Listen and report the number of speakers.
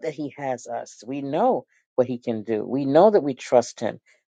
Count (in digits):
1